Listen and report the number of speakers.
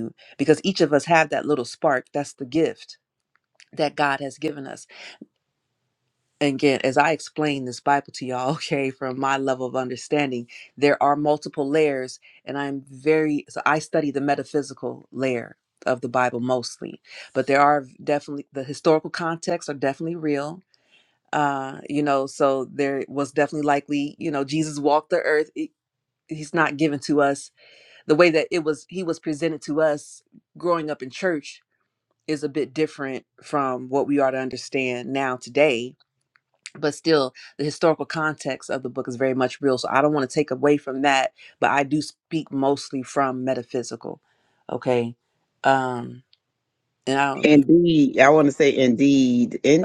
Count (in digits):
2